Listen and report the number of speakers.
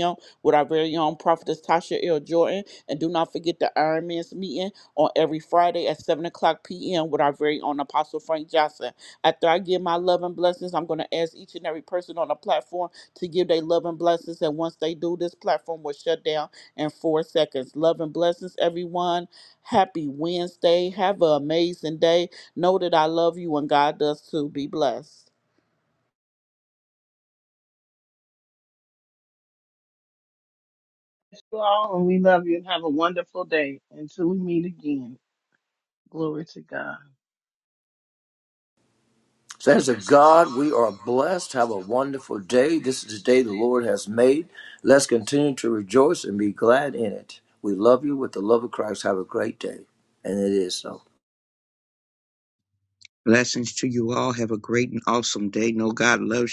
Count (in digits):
4